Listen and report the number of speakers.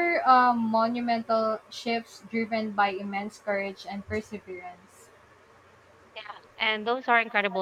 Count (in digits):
2